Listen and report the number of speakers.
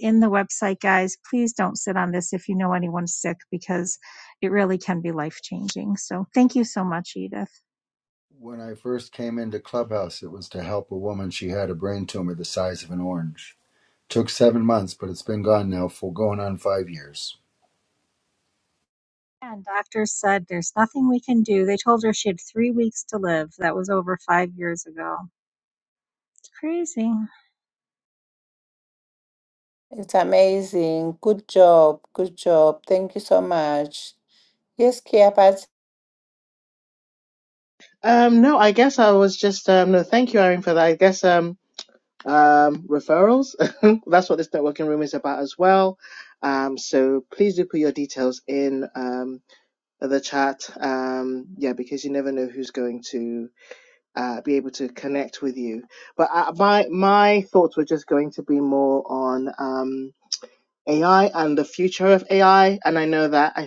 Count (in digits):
4